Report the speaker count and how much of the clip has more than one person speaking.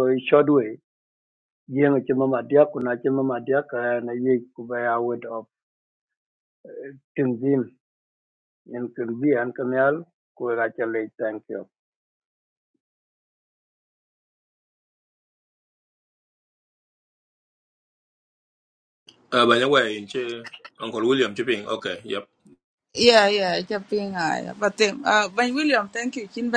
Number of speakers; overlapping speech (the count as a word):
three, no overlap